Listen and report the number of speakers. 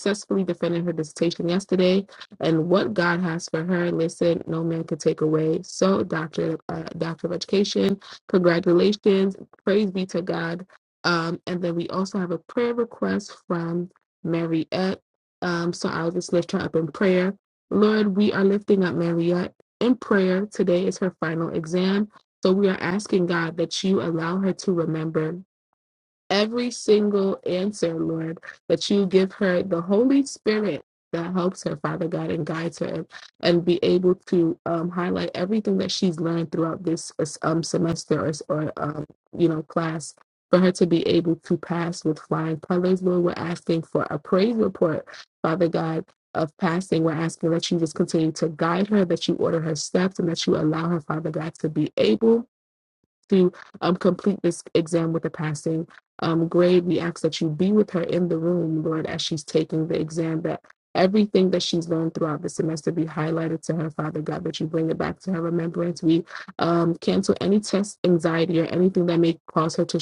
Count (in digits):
1